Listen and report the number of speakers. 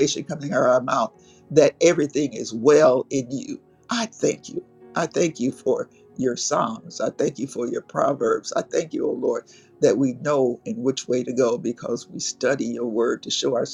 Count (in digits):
1